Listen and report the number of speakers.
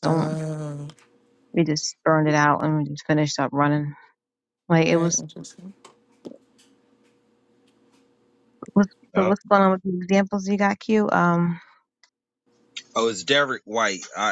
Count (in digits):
3